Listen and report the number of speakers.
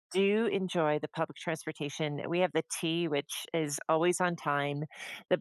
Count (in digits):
1